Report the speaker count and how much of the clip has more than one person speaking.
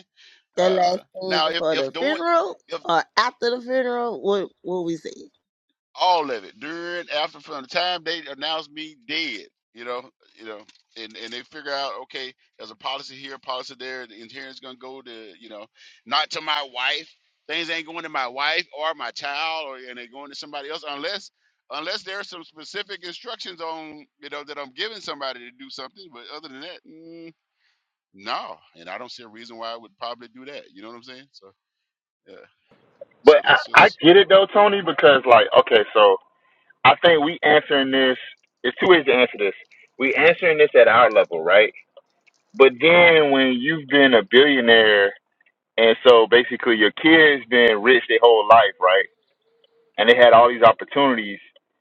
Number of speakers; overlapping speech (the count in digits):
3, about 5%